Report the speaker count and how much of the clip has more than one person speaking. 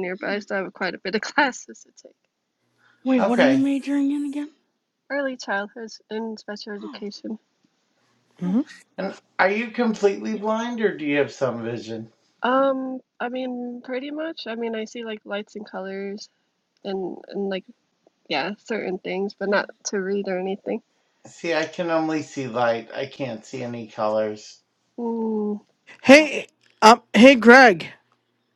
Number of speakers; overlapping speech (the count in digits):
4, about 5%